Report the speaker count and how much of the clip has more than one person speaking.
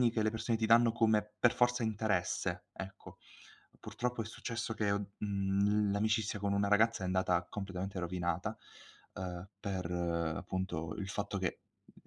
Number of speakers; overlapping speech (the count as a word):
one, no overlap